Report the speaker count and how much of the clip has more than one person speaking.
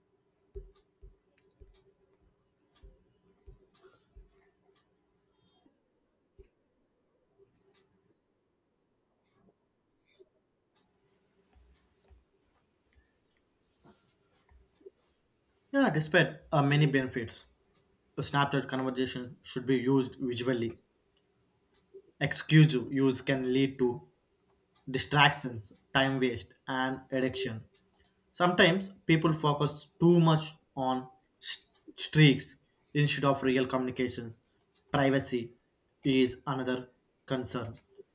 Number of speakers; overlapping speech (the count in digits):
1, no overlap